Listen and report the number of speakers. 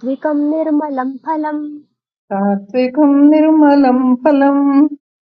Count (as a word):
two